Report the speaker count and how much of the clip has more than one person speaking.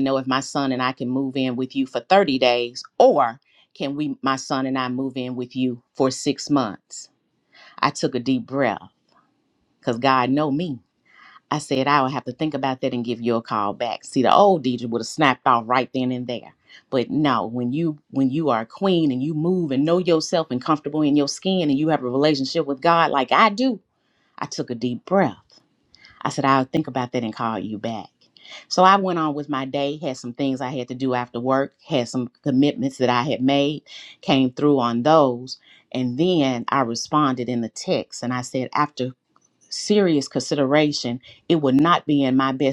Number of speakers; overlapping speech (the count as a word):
one, no overlap